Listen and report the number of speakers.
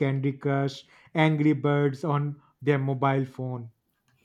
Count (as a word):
one